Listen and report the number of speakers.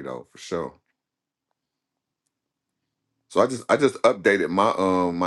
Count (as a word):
one